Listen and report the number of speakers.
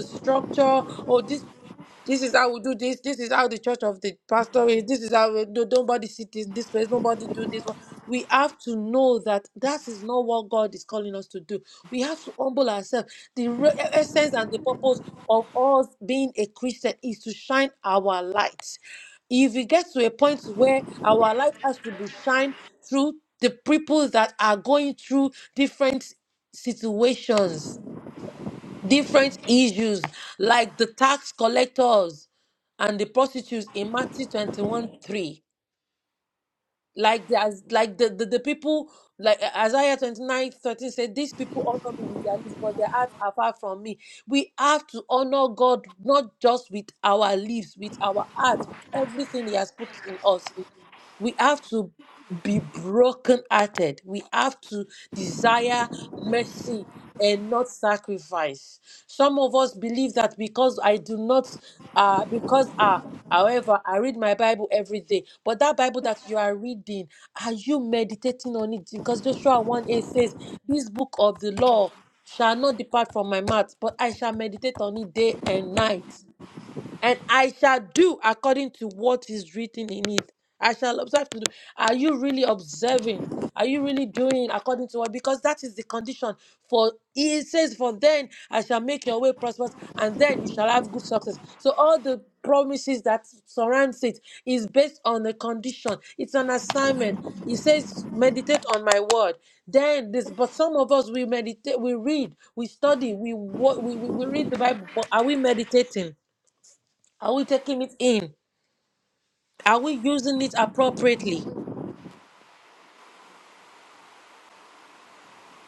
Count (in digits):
1